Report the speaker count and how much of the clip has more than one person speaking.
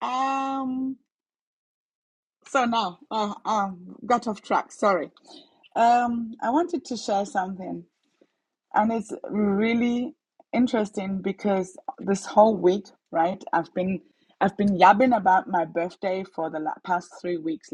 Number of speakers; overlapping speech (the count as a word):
one, no overlap